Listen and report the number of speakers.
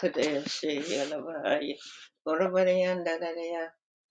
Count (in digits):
1